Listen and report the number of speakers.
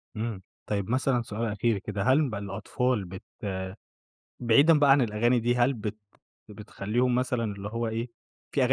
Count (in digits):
1